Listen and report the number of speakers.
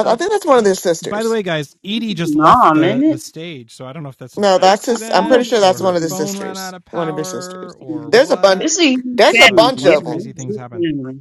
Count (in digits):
3